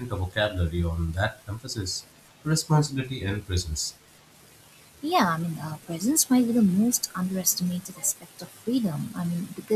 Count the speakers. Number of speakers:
2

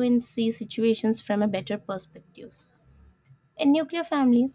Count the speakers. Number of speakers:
1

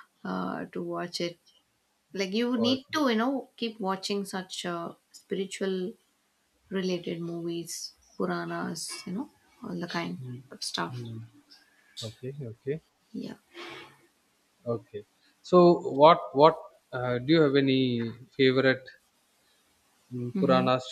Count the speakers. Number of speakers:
2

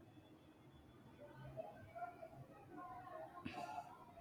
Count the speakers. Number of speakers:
0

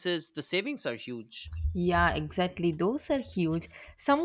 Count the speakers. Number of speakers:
2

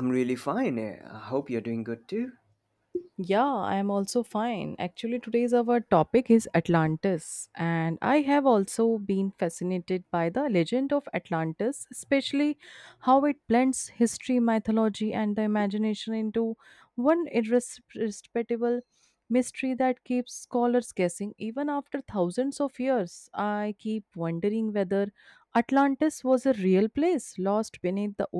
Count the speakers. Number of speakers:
2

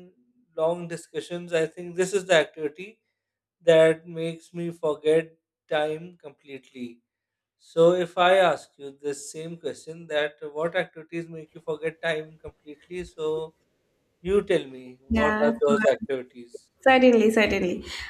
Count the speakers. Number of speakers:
2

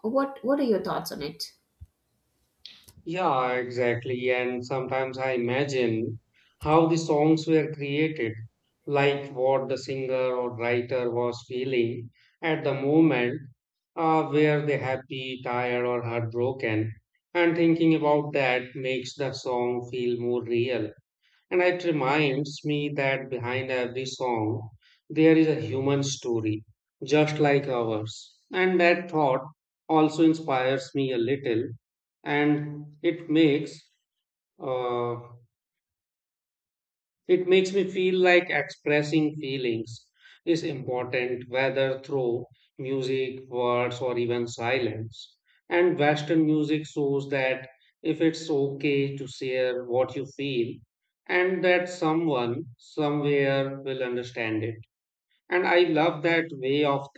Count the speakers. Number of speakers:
2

